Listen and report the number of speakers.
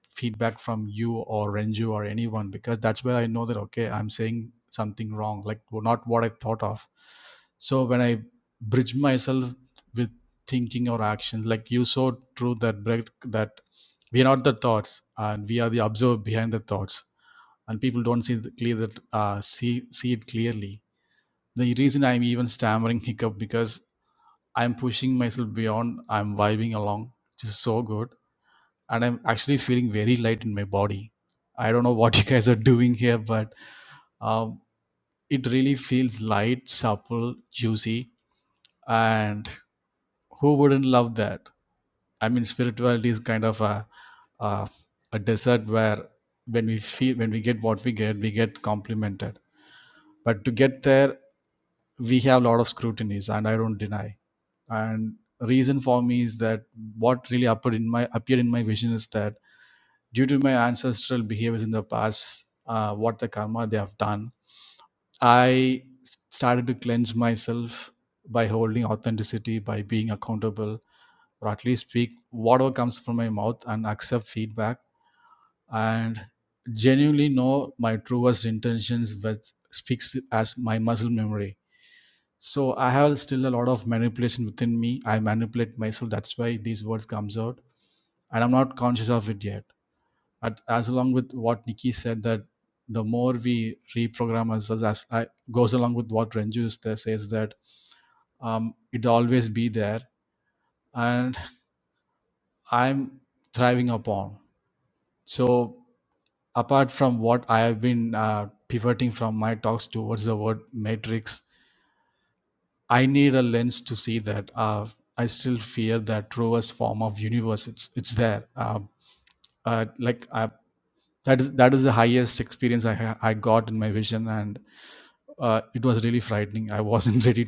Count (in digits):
1